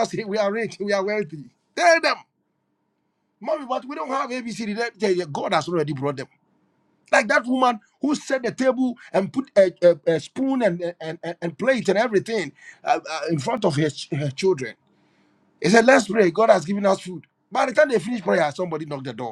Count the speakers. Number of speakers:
one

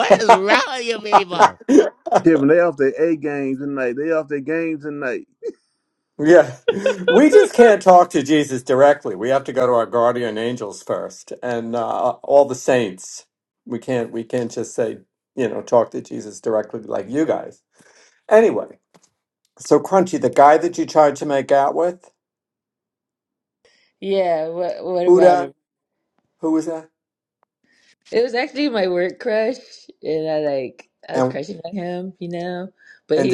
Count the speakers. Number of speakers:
four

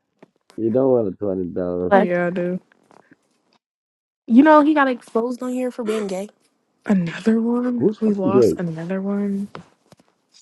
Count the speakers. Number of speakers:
three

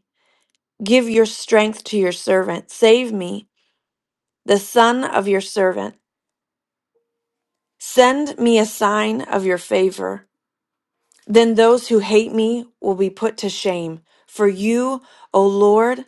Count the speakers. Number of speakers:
one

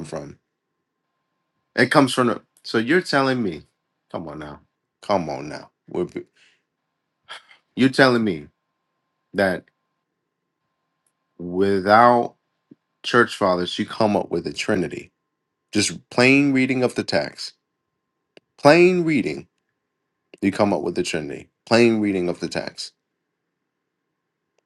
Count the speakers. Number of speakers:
one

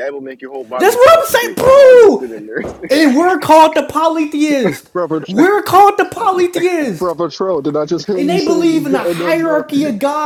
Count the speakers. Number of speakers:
three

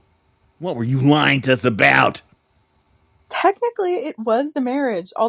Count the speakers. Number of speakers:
two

